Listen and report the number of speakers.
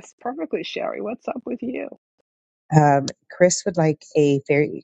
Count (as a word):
two